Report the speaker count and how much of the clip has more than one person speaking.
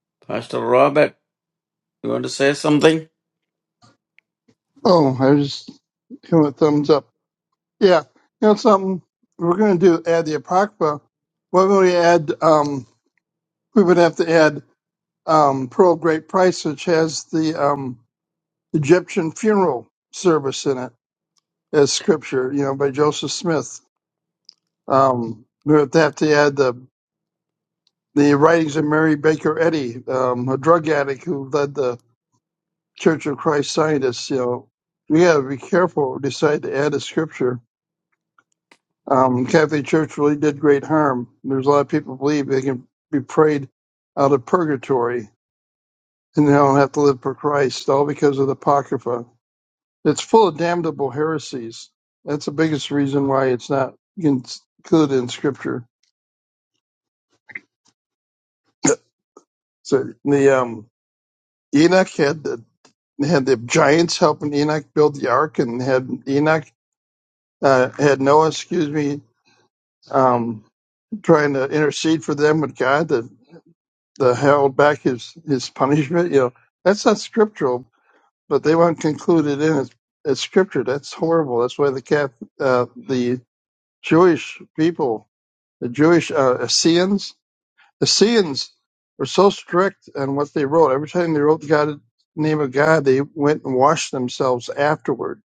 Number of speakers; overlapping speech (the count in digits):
2, no overlap